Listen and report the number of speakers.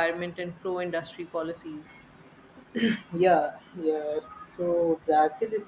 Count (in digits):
2